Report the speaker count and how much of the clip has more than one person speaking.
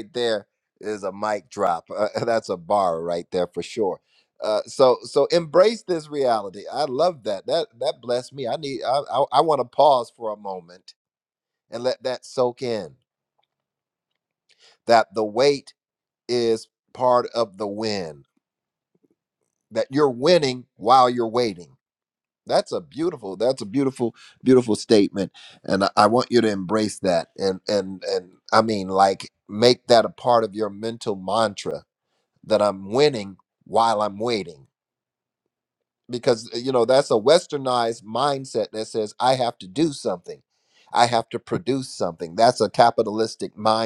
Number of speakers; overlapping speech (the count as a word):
one, no overlap